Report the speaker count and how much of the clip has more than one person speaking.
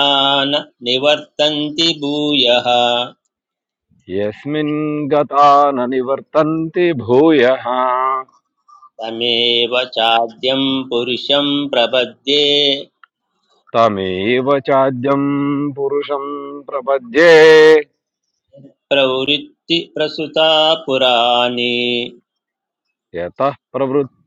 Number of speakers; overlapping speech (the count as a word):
two, no overlap